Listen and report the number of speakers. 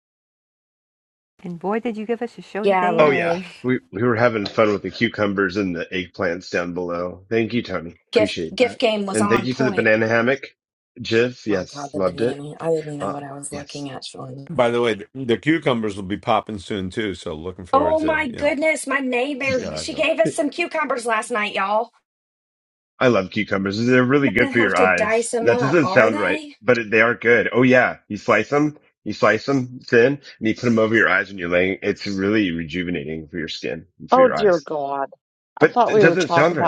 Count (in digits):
5